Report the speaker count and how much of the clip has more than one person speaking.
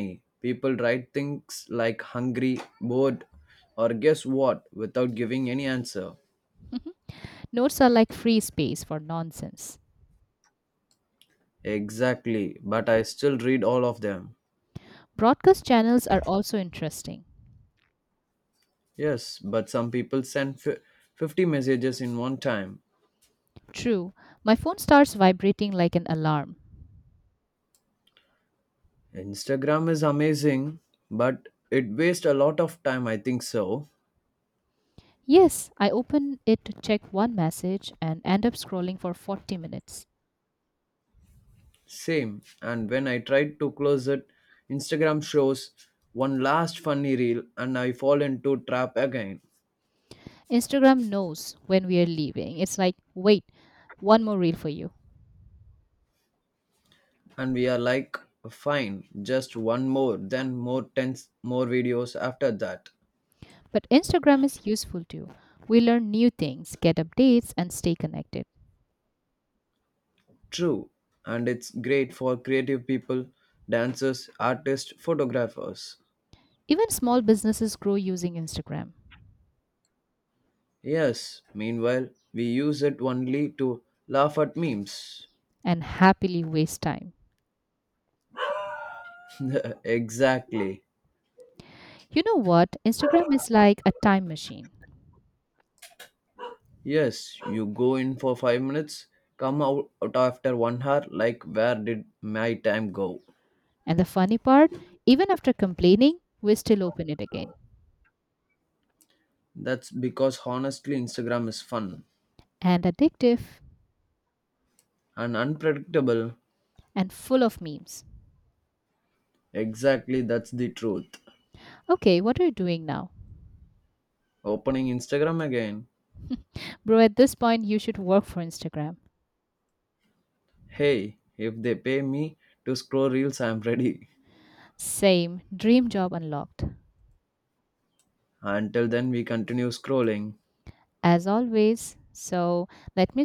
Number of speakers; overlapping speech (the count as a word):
two, no overlap